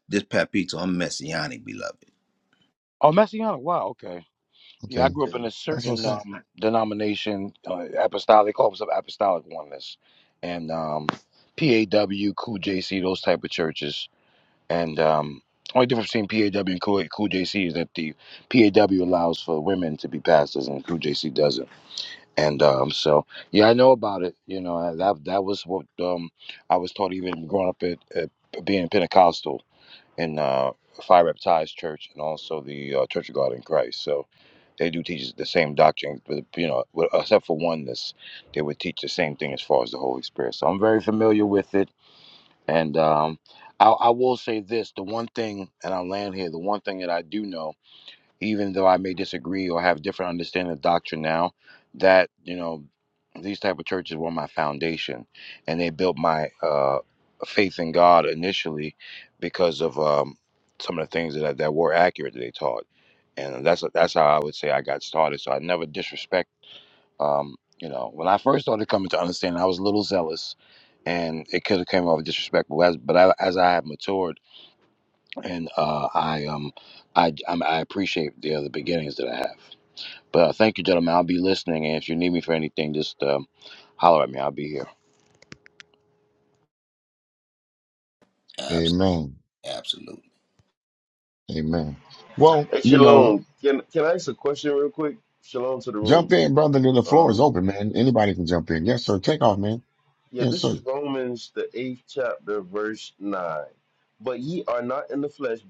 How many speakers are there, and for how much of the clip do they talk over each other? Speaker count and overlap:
four, about 2%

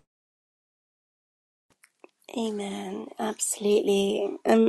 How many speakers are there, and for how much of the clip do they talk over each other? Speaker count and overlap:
one, no overlap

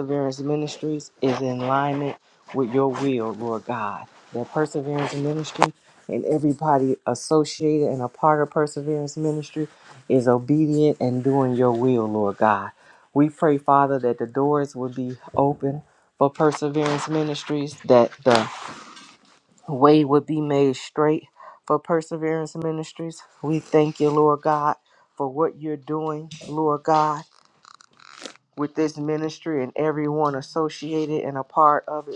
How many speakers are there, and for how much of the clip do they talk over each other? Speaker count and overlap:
one, no overlap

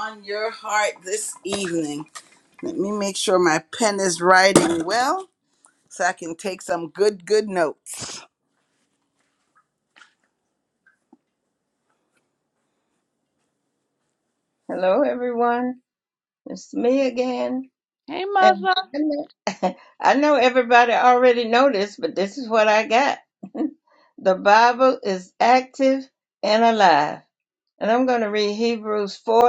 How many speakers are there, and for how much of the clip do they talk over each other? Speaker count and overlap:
two, about 1%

